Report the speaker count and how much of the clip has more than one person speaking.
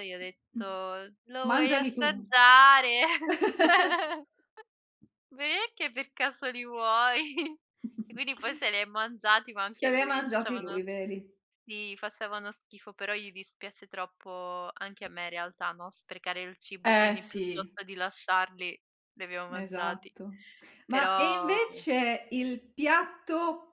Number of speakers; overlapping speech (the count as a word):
two, about 16%